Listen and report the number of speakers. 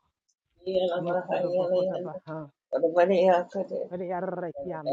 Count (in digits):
2